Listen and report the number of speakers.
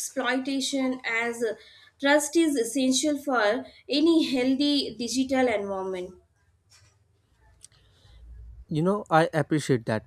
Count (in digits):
2